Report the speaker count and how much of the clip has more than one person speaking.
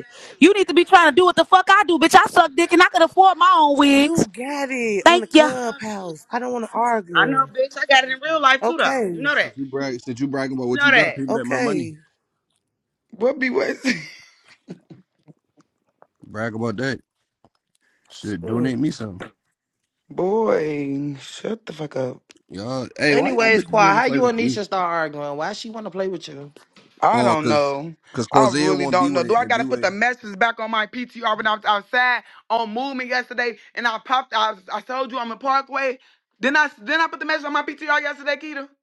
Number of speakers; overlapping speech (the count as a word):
five, about 16%